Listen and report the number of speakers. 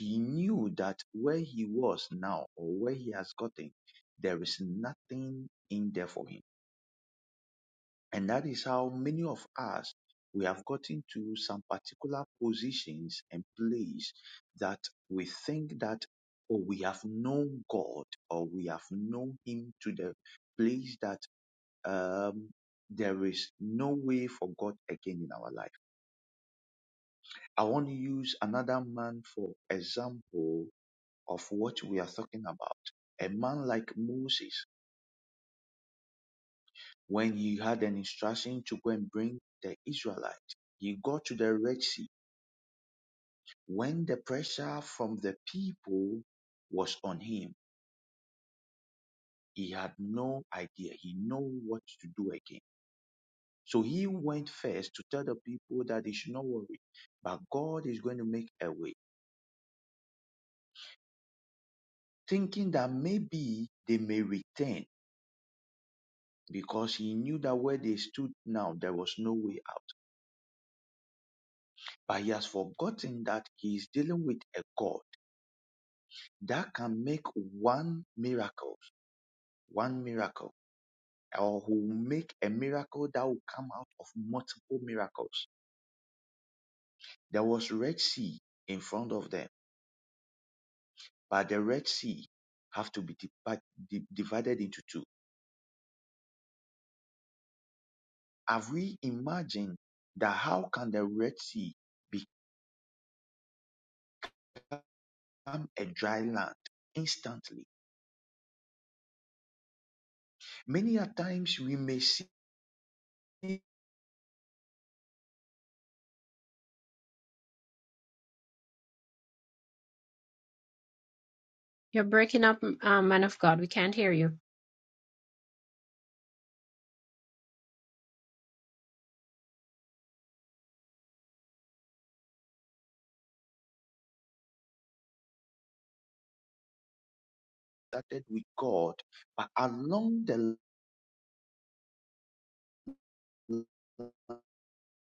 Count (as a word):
two